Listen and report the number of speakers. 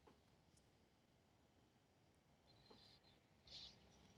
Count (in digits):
0